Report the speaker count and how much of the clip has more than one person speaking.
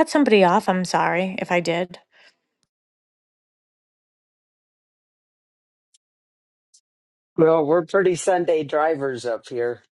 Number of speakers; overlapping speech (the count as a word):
two, no overlap